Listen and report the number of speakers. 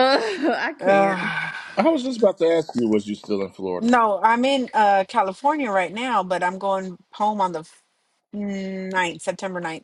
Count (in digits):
3